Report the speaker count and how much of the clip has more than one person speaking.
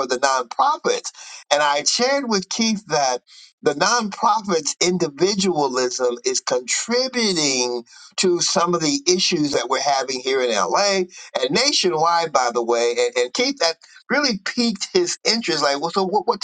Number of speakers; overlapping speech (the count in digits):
1, no overlap